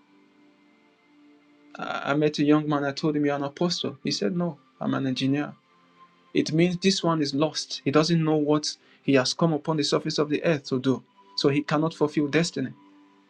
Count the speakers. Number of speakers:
1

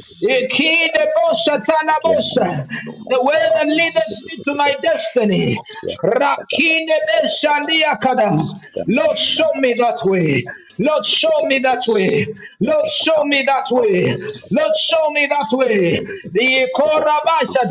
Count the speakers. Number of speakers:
2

